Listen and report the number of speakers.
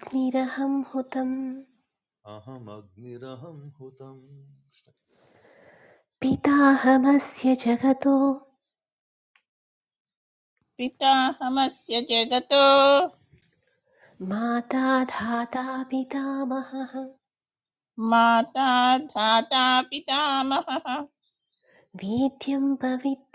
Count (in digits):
3